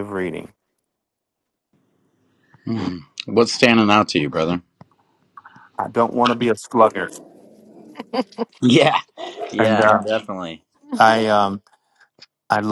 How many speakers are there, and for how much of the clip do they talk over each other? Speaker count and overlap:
2, about 4%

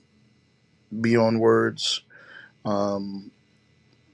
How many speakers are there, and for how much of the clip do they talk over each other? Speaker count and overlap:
1, no overlap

